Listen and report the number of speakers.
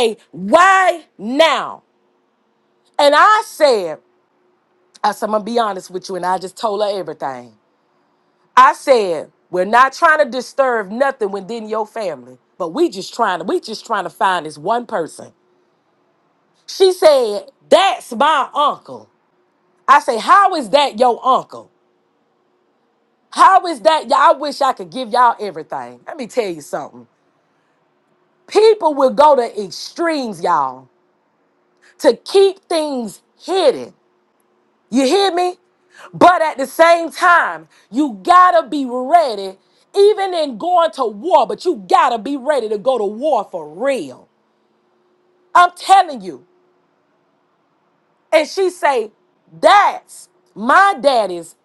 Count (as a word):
one